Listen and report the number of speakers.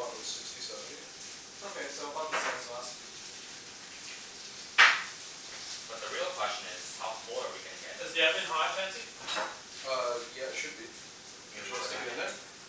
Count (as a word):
four